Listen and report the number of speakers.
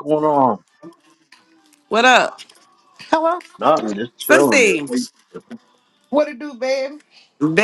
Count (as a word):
three